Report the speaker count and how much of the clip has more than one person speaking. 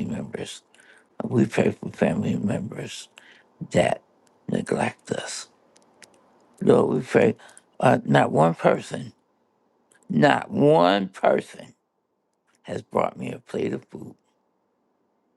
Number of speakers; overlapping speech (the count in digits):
1, no overlap